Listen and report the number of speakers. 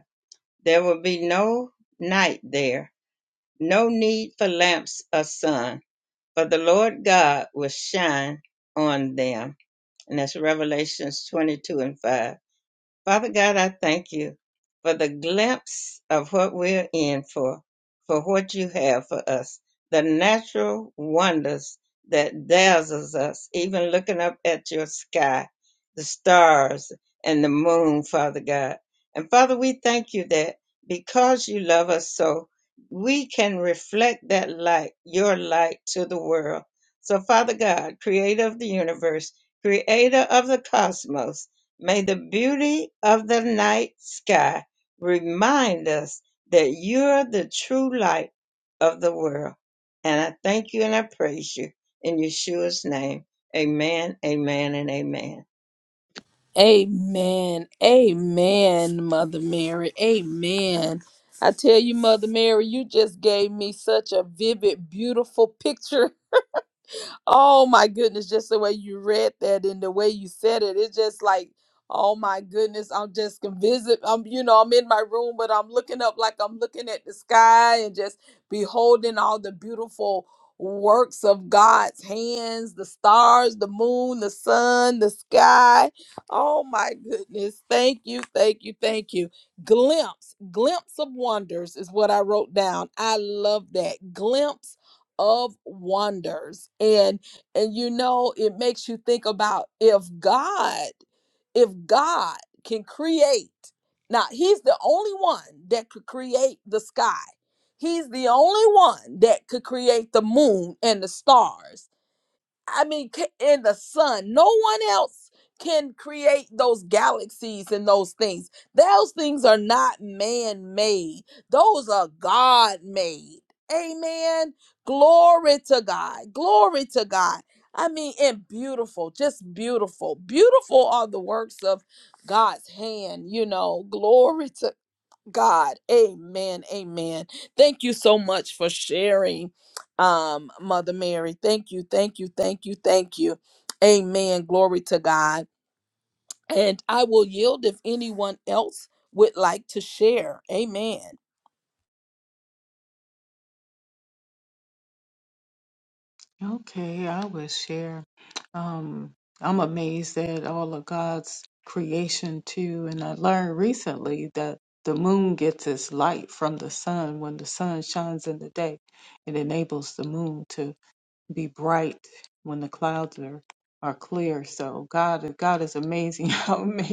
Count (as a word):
three